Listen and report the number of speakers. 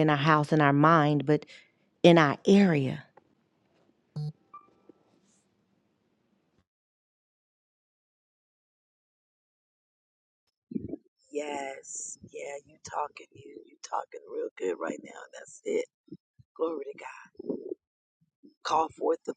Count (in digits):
2